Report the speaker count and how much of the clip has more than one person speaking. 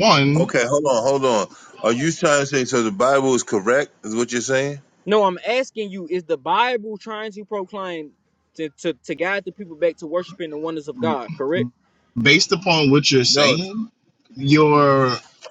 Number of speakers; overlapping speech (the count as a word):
three, about 3%